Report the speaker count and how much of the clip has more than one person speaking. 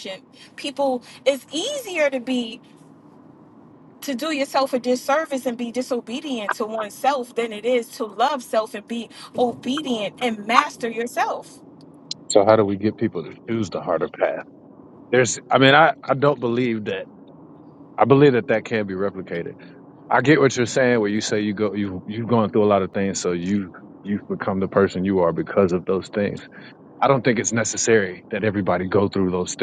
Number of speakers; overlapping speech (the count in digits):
2, no overlap